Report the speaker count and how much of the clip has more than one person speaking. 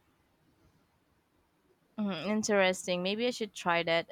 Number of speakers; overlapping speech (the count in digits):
1, no overlap